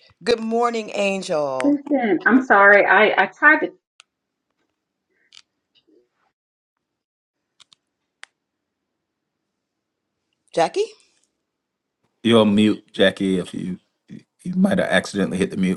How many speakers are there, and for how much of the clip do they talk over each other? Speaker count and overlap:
3, about 1%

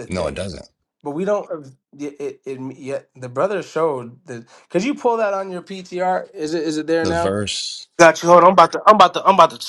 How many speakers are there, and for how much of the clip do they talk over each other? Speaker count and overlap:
3, about 6%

